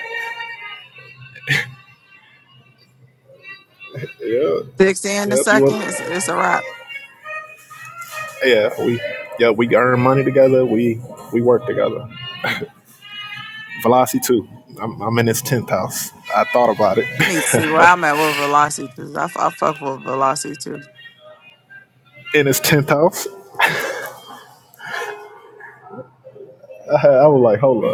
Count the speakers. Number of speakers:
2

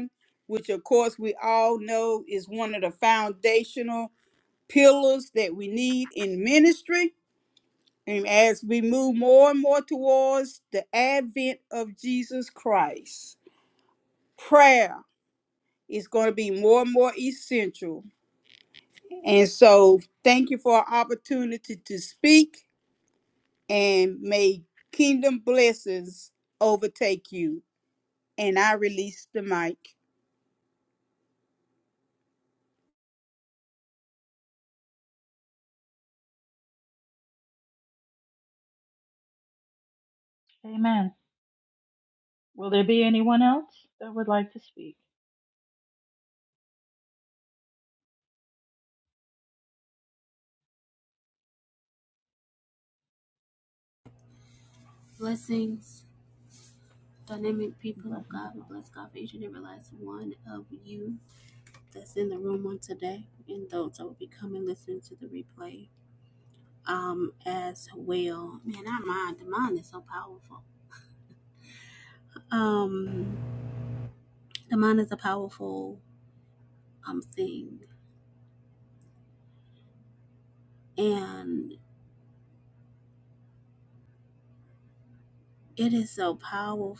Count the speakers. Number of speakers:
3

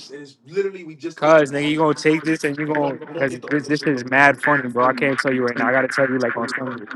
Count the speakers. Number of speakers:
2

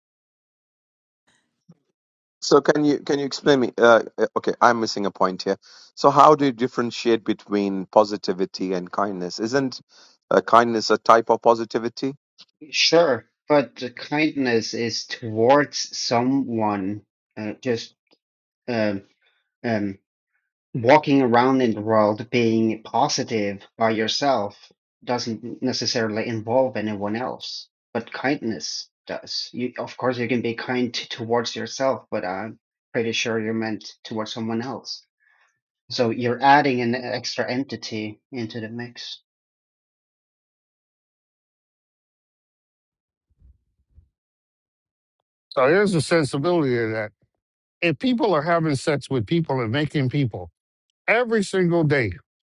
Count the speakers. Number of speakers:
3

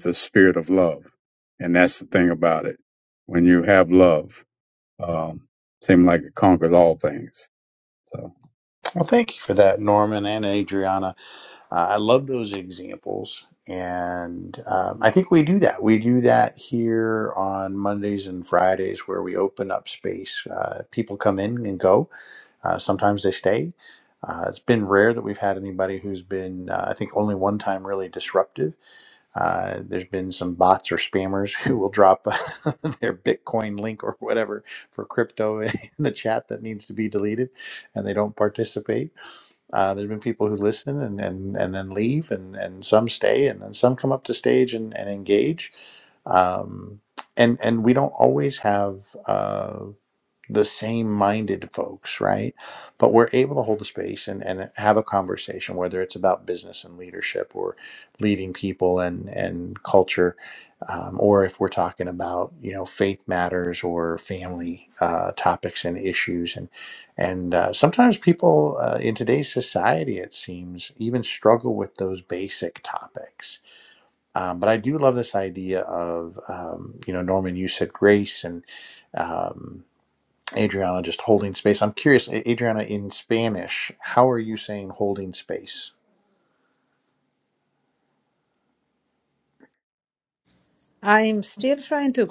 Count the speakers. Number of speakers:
3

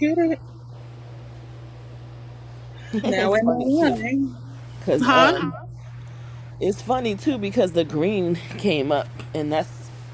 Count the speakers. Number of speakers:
2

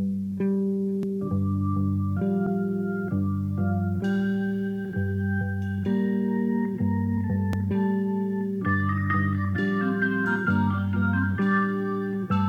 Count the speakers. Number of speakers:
0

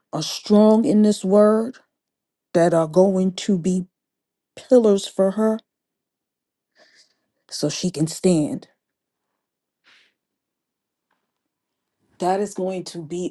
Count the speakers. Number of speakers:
1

